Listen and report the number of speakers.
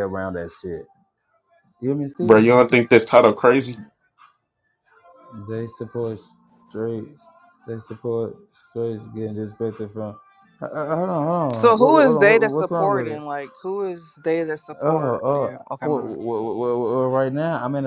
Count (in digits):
3